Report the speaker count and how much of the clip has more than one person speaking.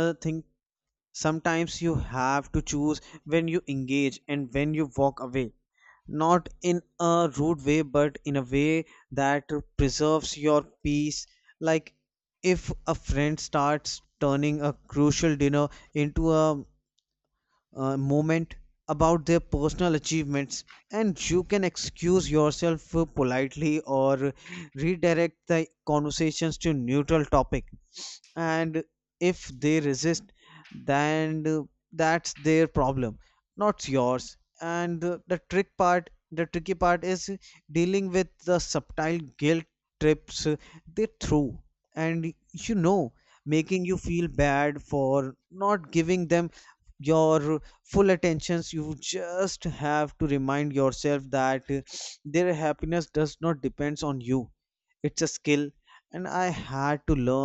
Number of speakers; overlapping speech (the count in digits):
1, no overlap